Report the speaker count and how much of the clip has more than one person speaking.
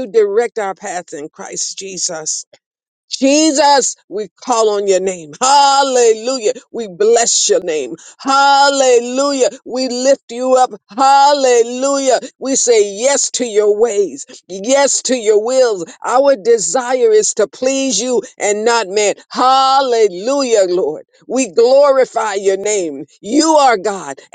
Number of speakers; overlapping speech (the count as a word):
one, no overlap